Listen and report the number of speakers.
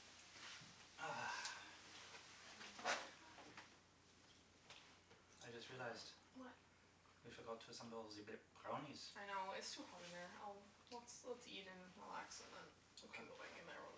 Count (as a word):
two